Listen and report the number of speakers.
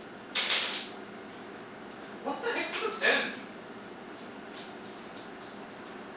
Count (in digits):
1